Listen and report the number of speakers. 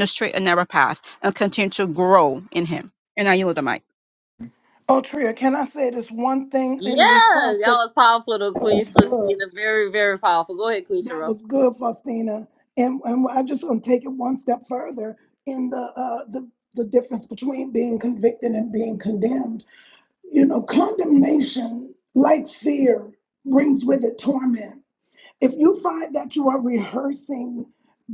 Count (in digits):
3